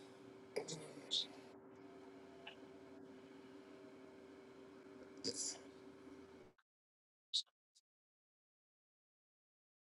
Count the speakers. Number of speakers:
zero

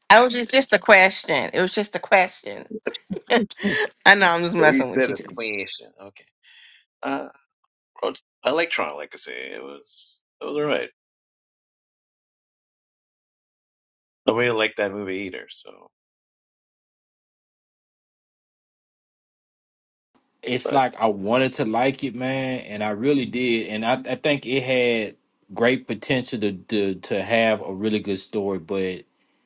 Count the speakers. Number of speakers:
three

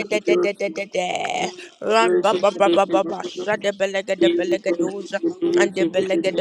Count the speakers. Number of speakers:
two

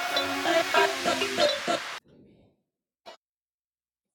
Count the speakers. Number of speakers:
zero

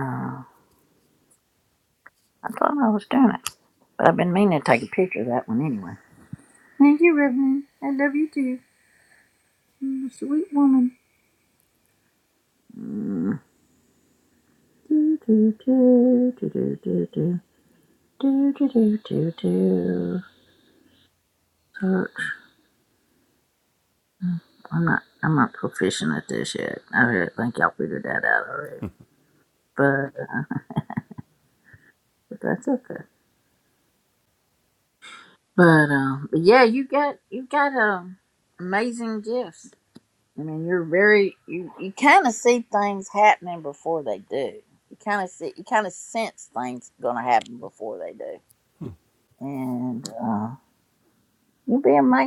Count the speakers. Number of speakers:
one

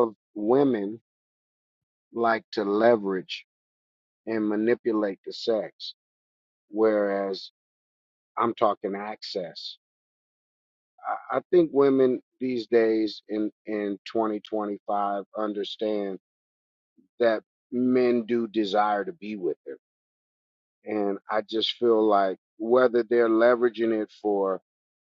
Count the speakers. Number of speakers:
one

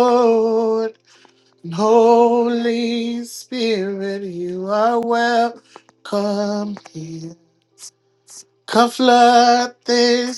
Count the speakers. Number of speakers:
one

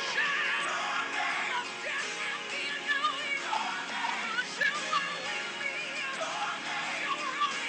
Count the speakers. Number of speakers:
zero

